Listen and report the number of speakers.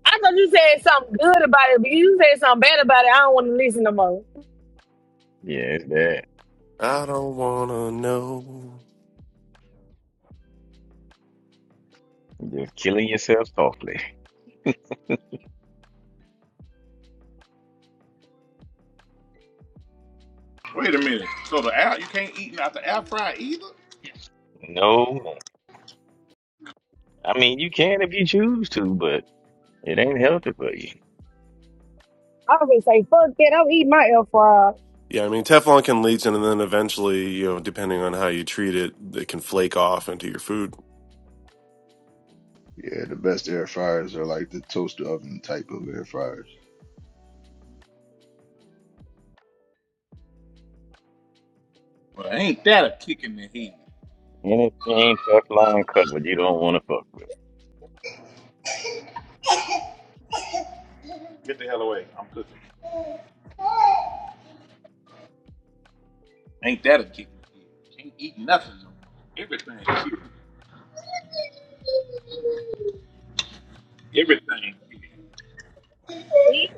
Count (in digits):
5